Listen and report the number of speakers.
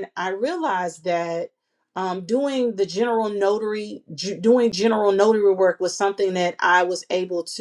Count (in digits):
1